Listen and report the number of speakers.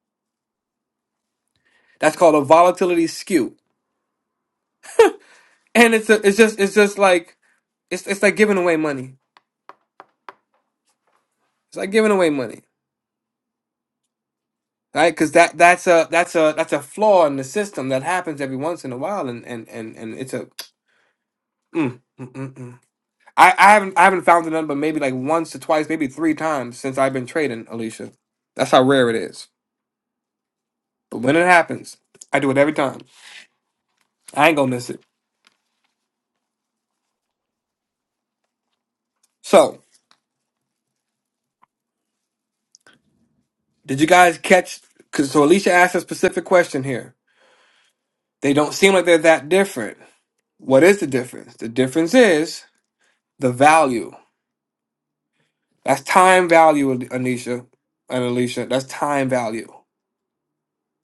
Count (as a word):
one